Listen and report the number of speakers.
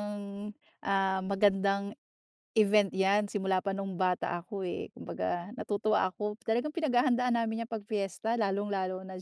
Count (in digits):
1